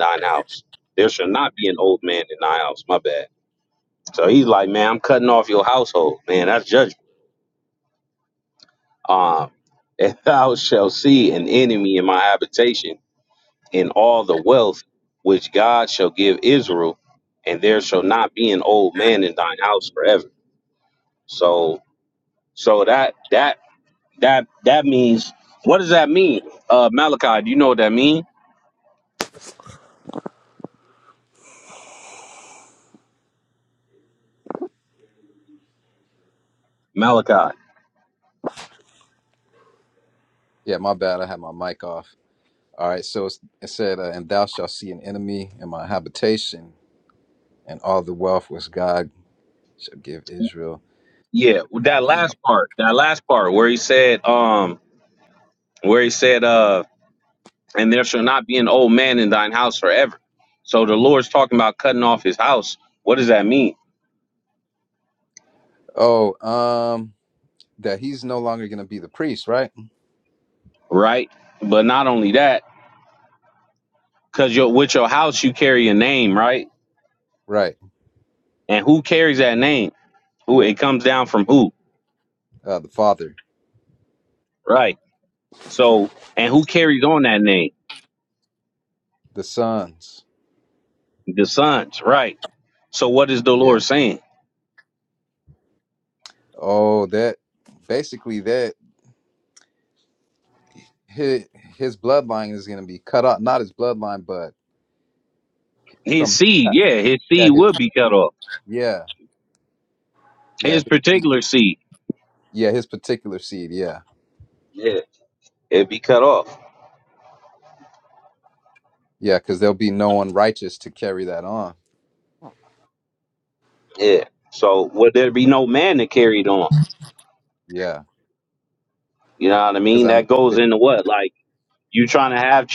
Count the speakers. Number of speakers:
two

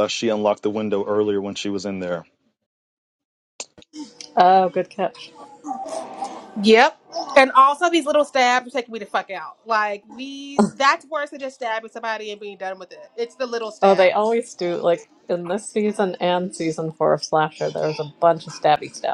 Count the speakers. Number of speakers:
three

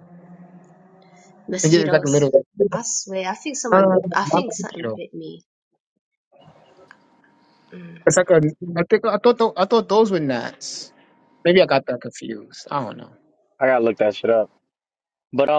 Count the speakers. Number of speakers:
three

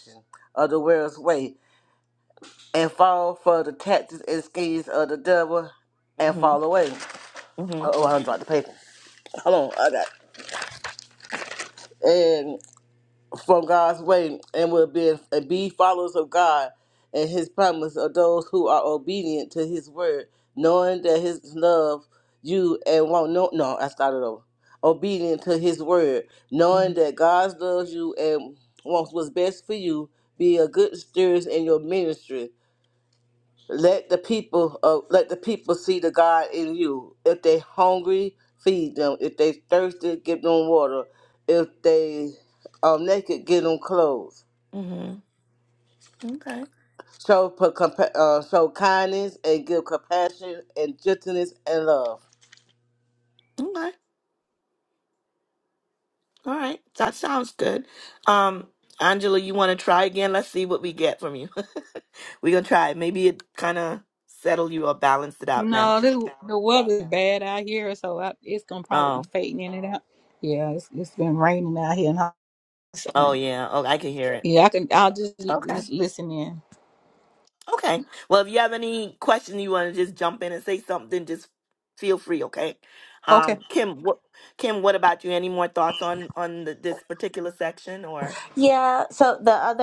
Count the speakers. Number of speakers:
four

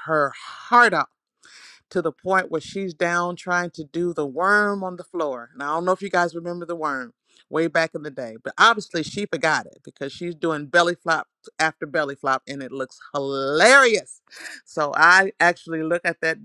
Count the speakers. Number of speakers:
one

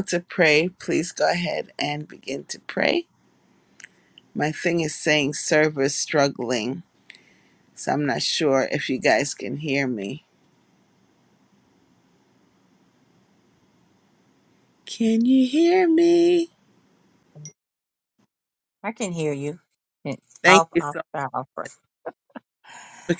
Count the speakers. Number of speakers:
two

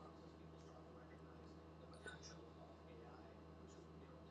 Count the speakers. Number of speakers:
zero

